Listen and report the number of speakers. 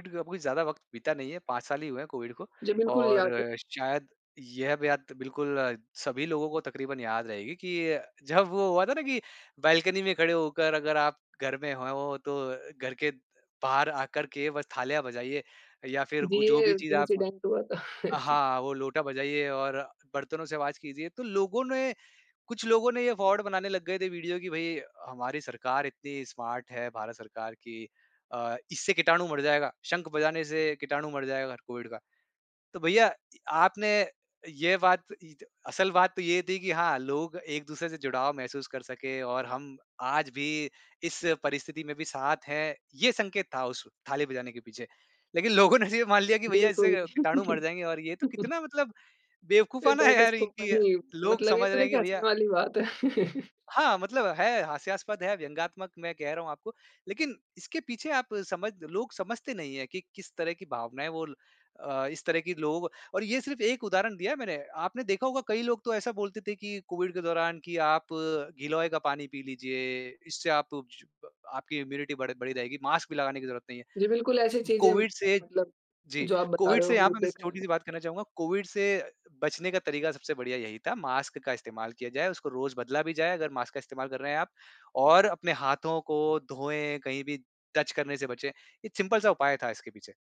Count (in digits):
2